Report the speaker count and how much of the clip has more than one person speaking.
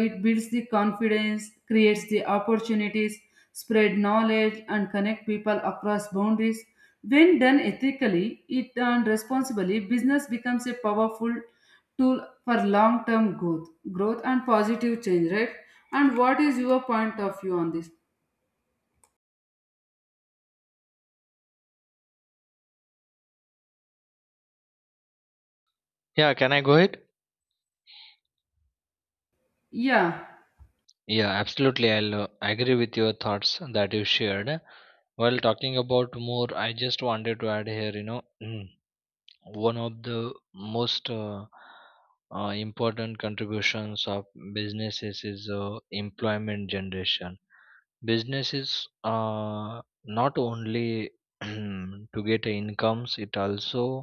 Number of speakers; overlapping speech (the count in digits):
2, no overlap